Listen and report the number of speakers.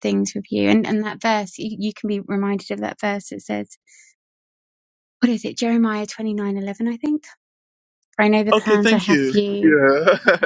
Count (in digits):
2